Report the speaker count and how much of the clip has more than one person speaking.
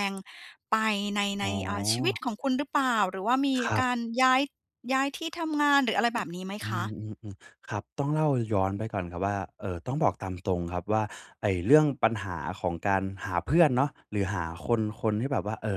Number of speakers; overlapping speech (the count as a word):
two, about 7%